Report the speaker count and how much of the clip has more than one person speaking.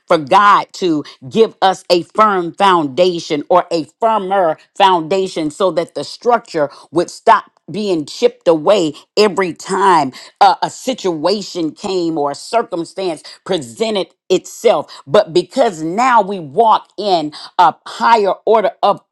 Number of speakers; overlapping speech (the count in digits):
1, no overlap